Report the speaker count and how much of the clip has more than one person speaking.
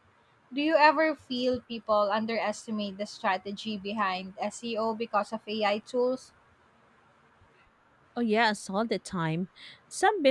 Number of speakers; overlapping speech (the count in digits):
2, no overlap